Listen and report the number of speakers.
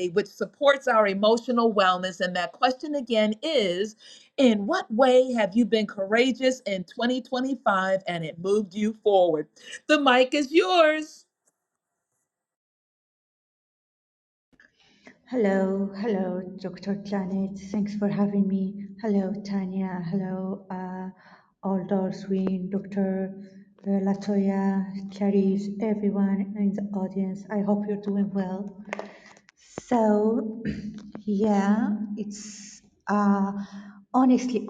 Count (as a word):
two